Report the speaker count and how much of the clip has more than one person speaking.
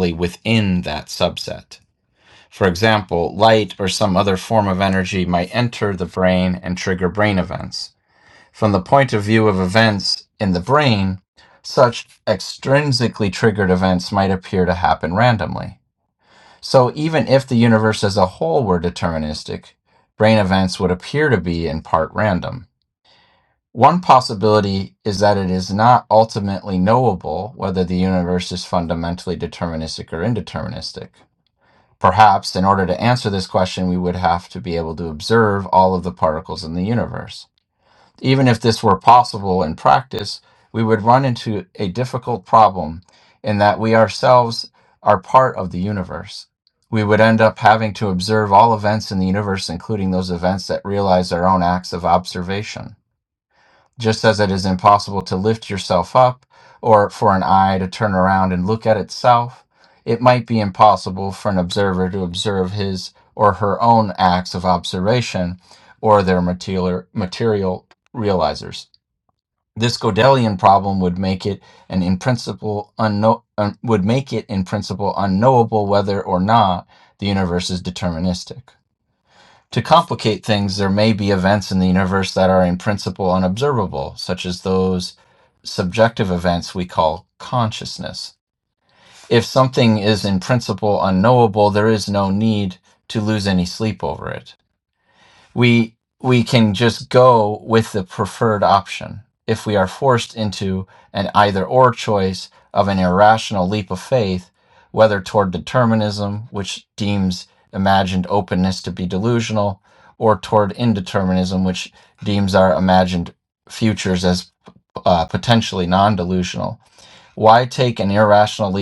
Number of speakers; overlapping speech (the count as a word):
one, no overlap